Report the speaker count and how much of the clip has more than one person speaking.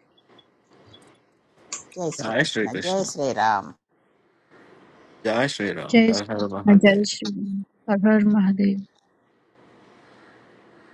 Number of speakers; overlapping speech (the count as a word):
three, about 19%